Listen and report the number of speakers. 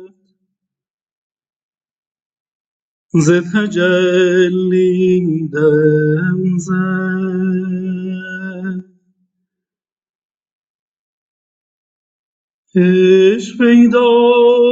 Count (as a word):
one